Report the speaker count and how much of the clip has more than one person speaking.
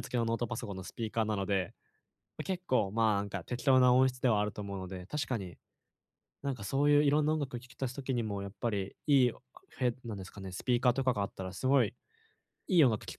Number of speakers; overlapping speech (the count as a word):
one, no overlap